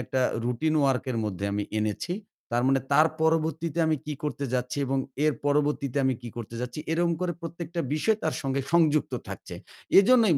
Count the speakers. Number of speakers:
1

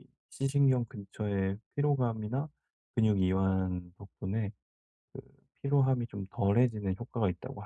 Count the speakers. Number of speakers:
1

